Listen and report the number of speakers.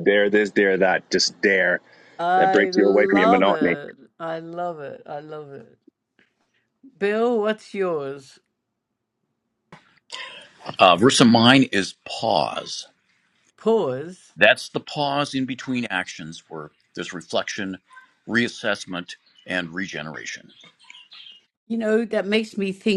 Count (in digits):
3